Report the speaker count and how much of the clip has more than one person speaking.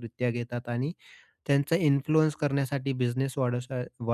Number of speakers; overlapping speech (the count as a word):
one, no overlap